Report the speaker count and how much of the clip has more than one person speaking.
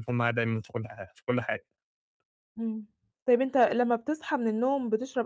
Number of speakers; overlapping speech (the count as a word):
two, no overlap